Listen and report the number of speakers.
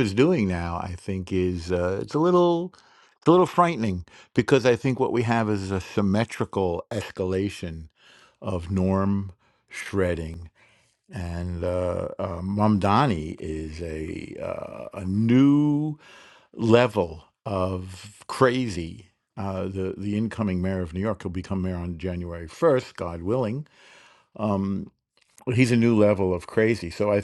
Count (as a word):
one